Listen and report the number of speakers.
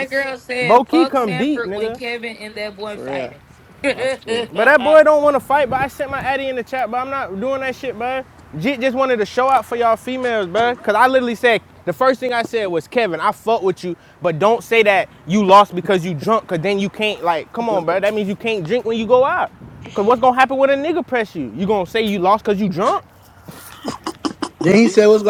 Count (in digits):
3